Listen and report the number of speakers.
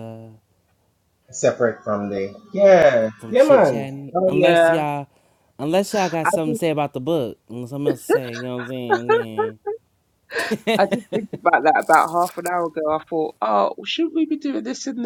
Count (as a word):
three